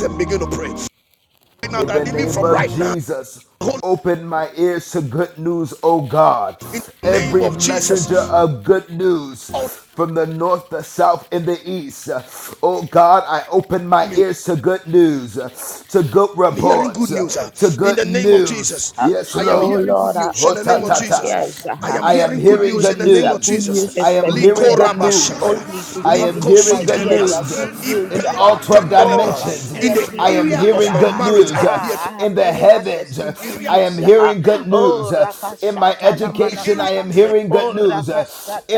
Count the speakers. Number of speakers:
three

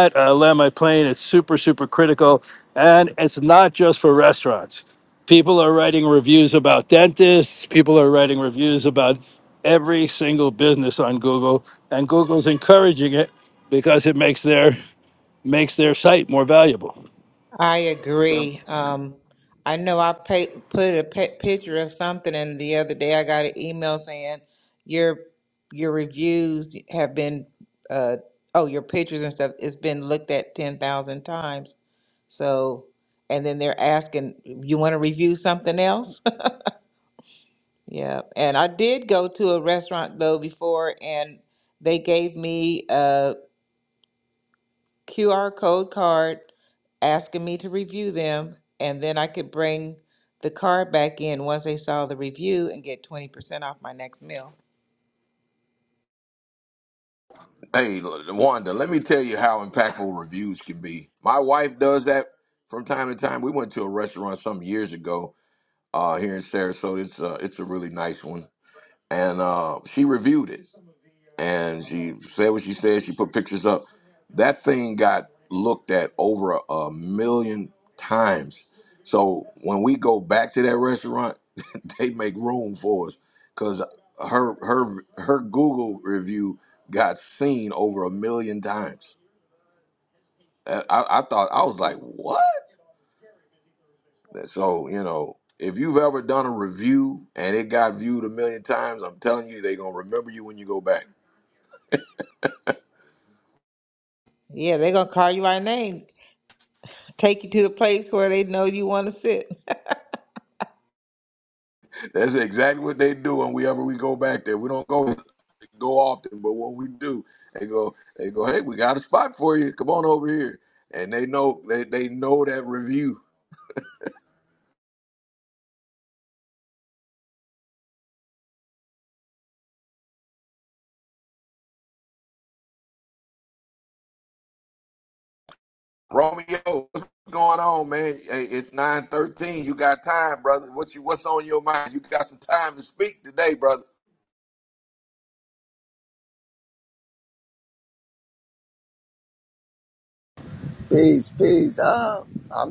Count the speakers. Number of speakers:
four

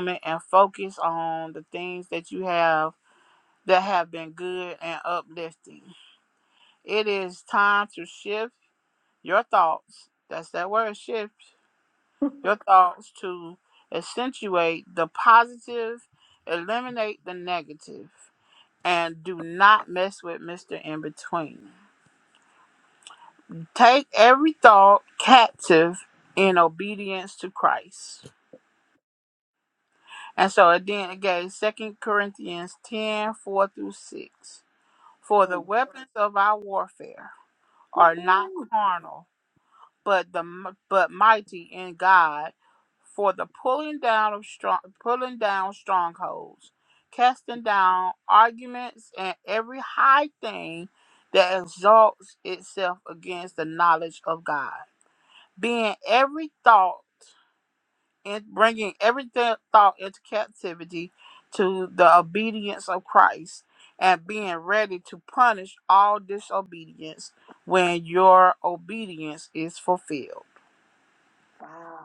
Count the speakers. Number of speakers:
two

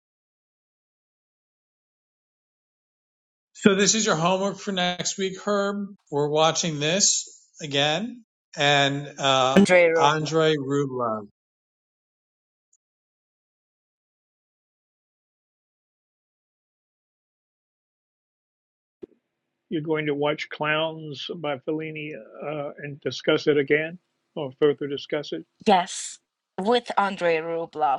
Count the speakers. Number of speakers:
three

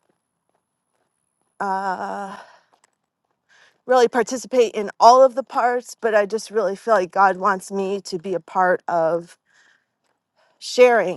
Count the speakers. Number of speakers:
one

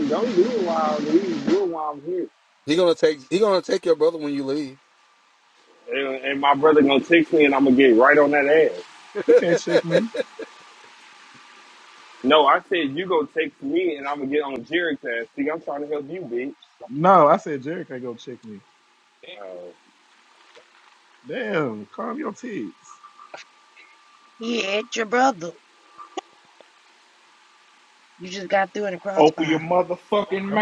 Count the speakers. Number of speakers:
five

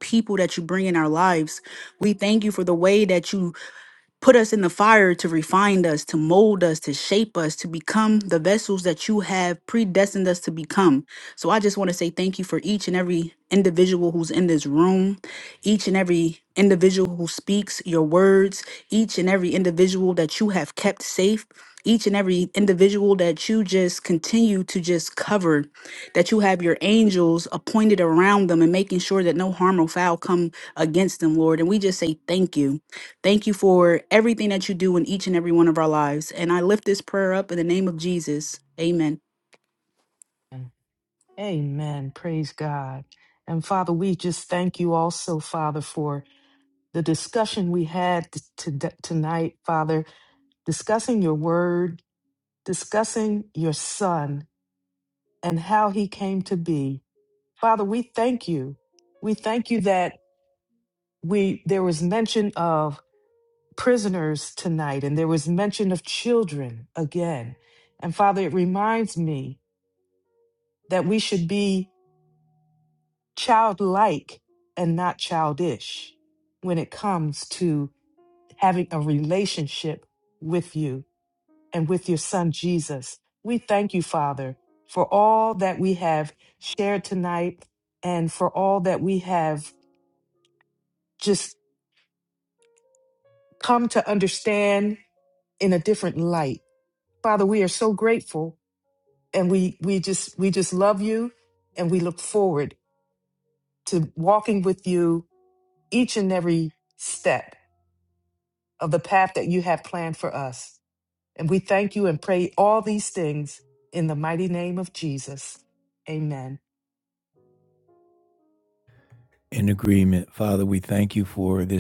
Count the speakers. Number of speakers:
three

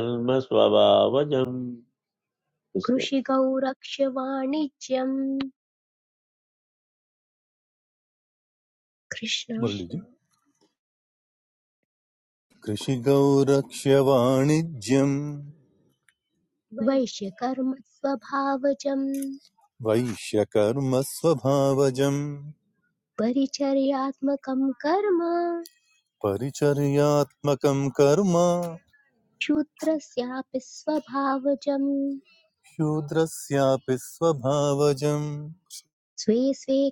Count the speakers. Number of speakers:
three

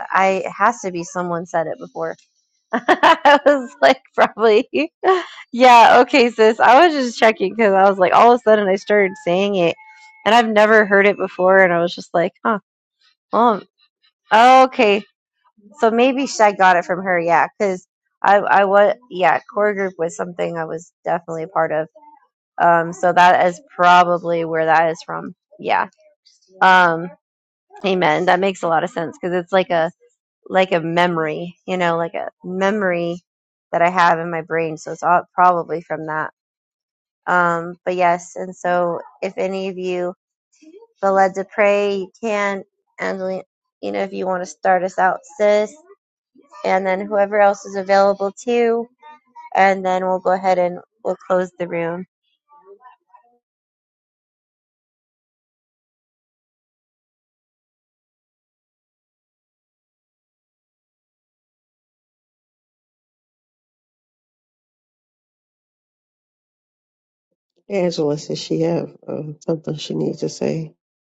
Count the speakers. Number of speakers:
two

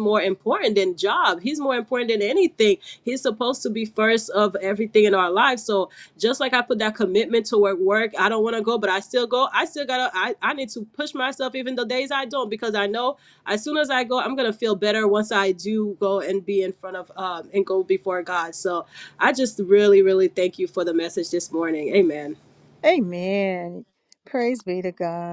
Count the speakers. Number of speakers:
two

